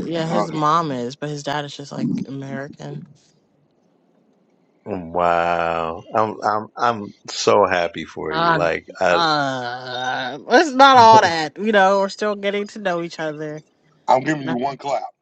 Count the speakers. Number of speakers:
three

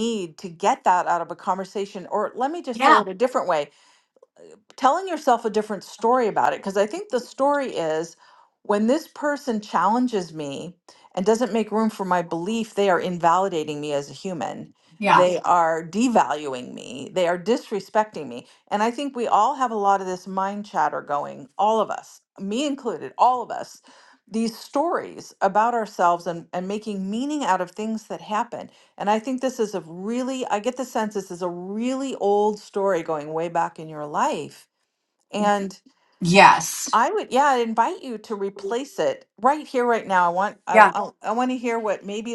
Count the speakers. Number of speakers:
two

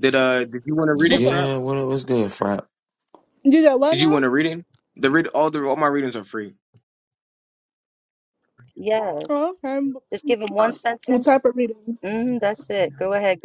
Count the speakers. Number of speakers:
four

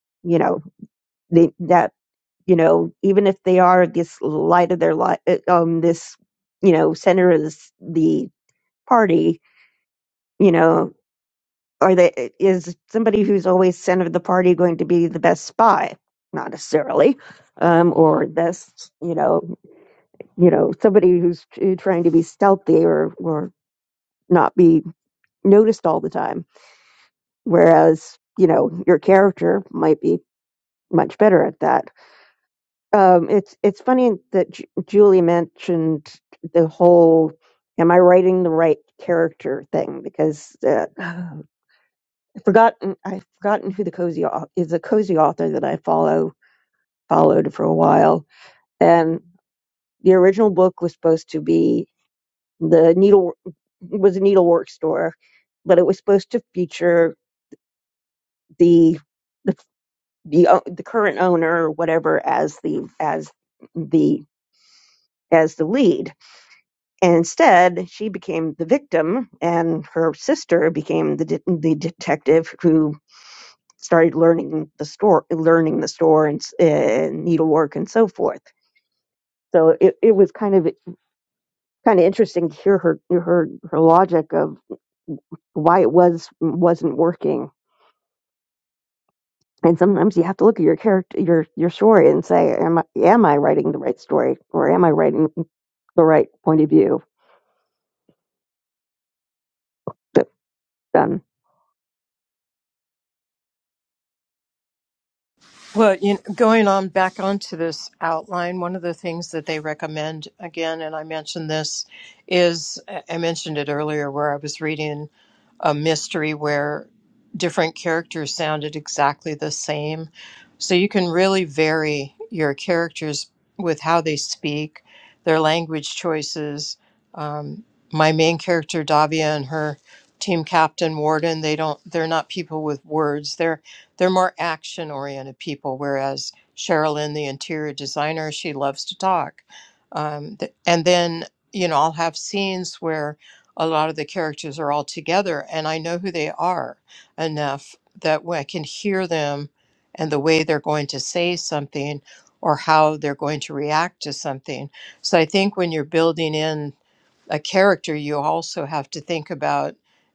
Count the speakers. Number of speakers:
two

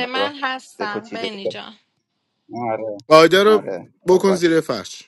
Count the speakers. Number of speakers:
three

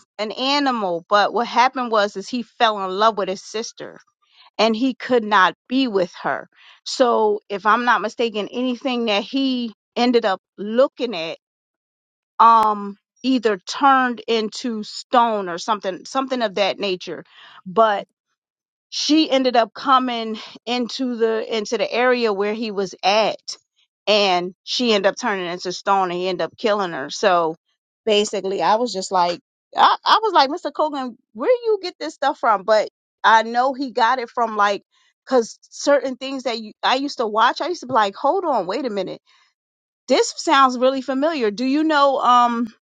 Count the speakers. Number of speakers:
one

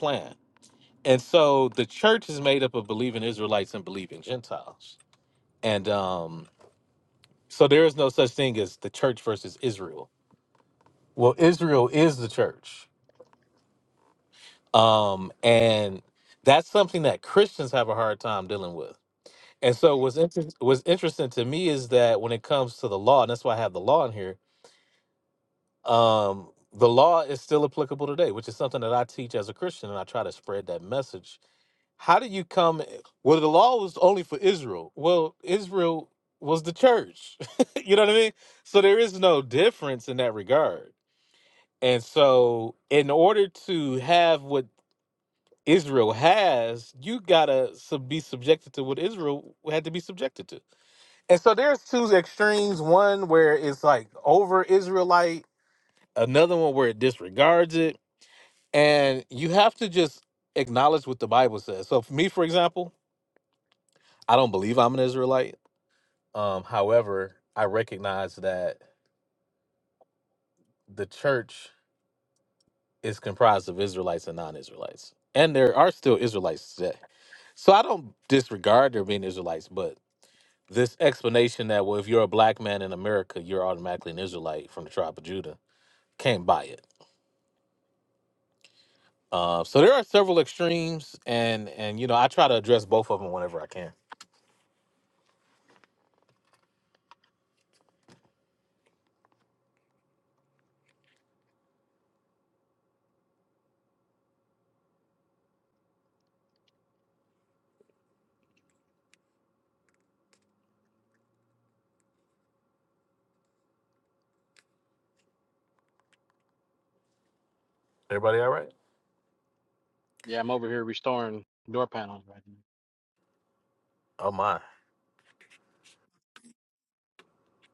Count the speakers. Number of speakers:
two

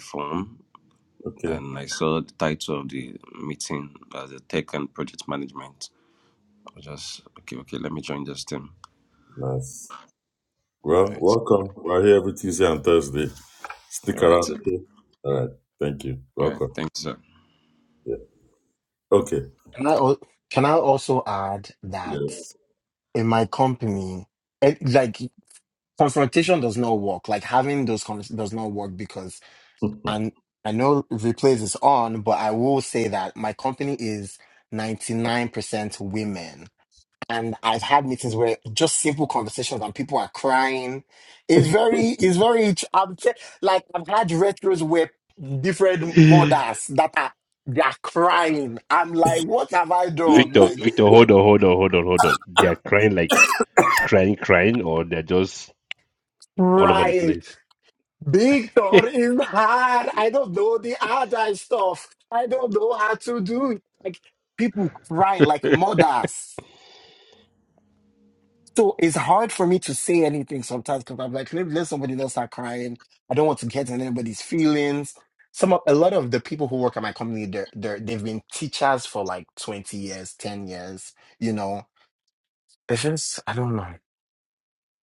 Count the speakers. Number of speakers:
four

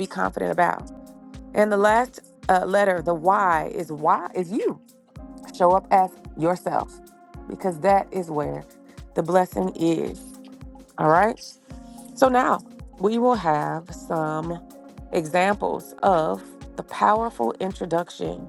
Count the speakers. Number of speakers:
one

